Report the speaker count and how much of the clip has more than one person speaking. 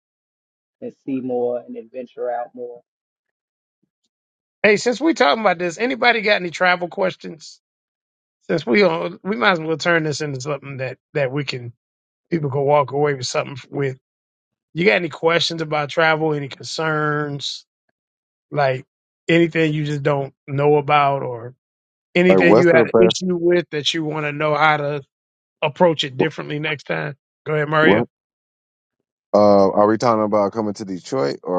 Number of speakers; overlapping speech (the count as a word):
three, about 4%